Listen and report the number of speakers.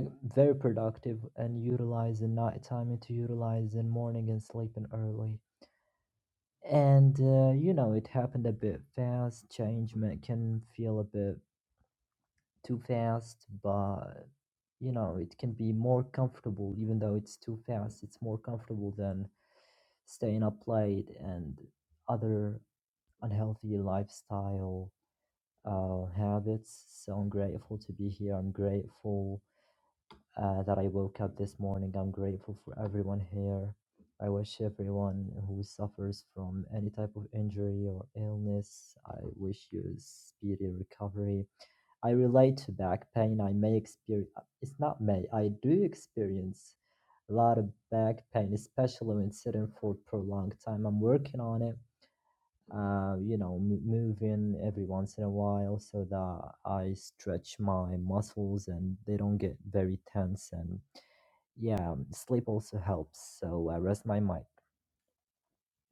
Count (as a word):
one